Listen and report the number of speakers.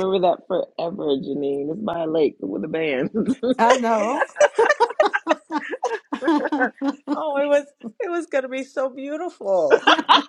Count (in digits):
3